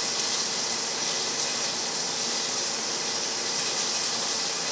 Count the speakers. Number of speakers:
0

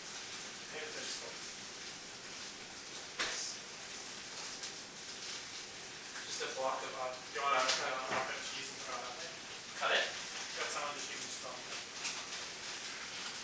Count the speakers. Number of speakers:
2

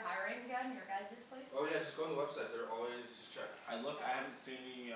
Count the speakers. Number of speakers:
3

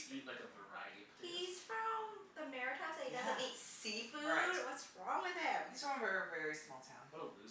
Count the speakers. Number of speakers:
3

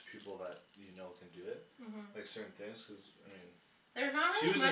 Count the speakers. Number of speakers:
2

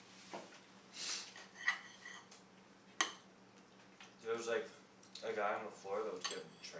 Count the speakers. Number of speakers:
1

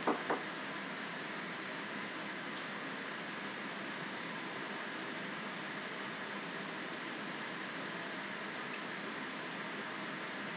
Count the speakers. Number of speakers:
0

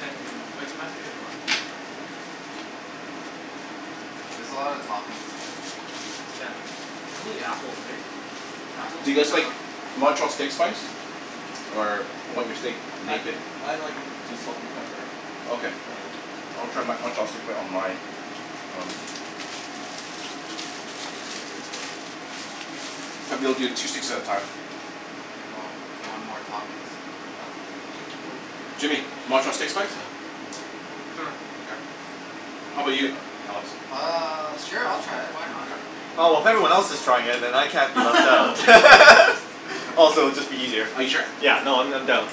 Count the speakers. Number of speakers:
4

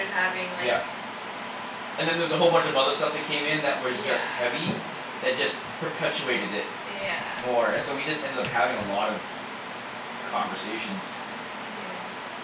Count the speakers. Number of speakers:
2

